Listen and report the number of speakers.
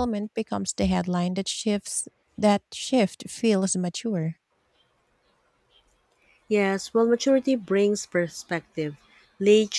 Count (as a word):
two